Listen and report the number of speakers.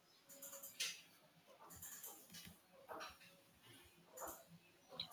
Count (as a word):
zero